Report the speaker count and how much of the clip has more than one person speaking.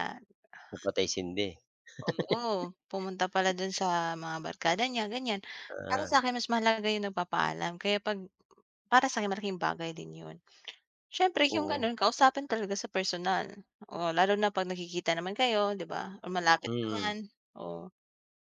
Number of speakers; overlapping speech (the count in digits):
2, about 6%